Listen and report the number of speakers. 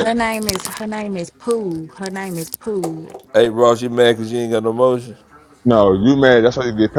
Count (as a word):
three